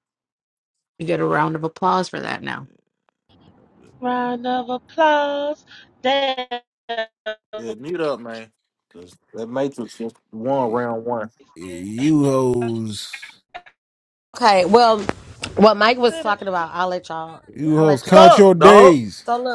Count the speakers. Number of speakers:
five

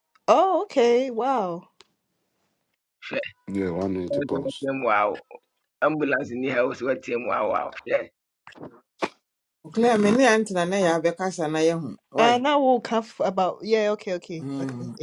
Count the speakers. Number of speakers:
four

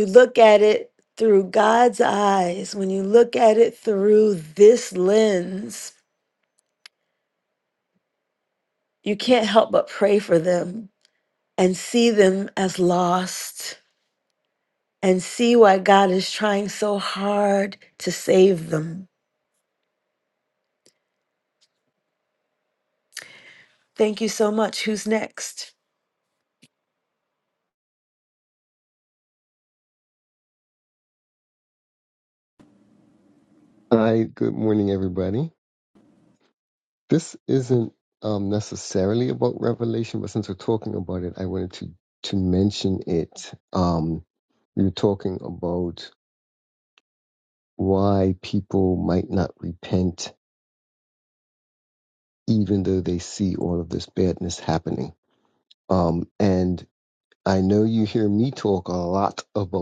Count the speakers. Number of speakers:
two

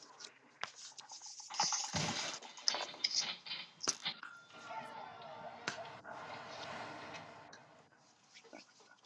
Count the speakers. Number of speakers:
zero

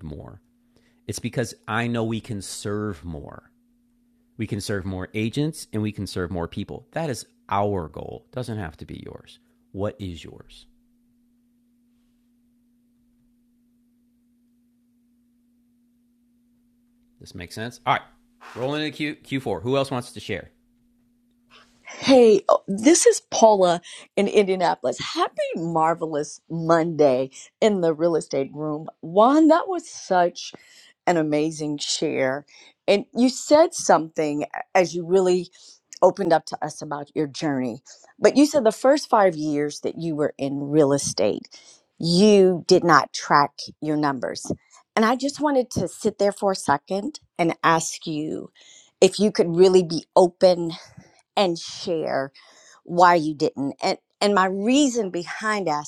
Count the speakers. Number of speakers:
two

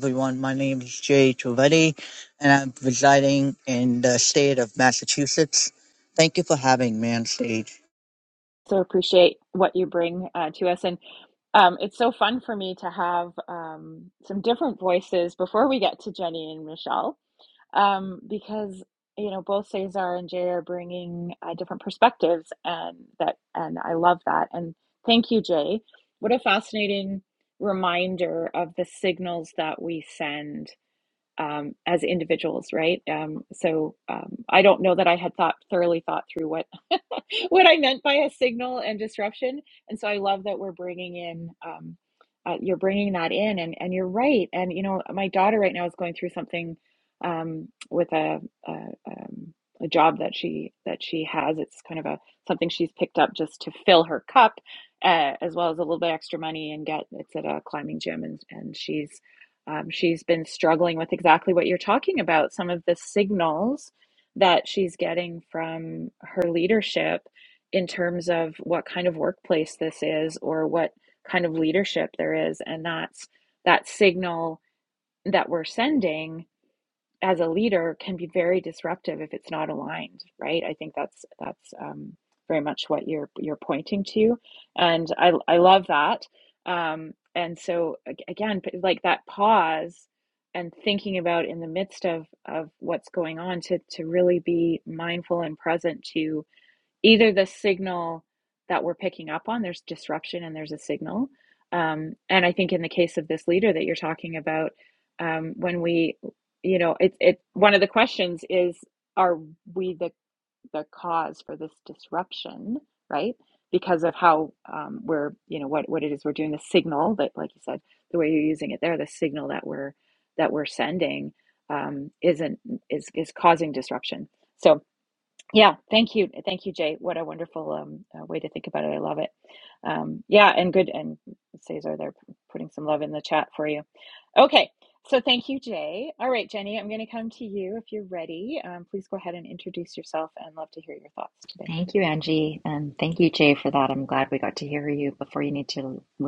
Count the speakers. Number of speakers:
three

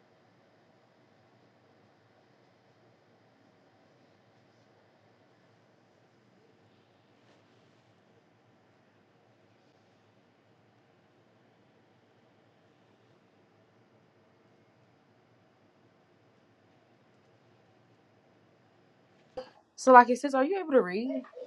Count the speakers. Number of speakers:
one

